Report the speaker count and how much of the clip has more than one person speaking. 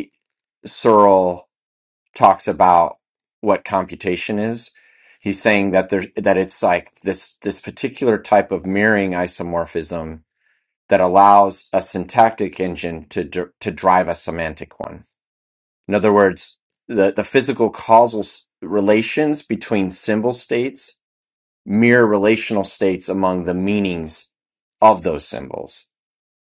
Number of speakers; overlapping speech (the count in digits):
1, no overlap